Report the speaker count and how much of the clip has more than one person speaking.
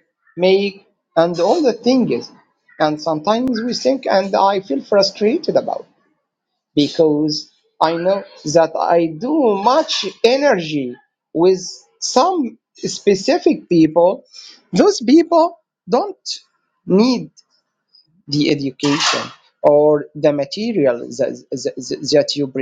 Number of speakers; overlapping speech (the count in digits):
1, no overlap